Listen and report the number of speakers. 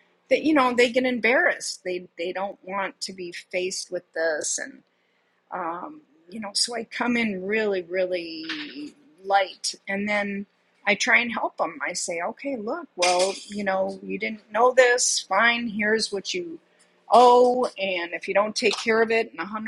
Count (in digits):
1